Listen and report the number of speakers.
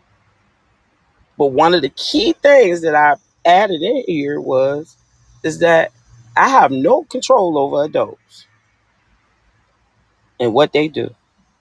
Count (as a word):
one